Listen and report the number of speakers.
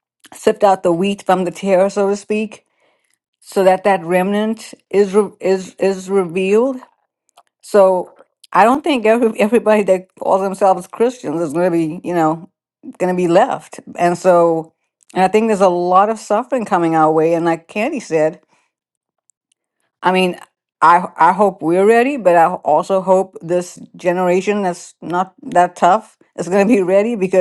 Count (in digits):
1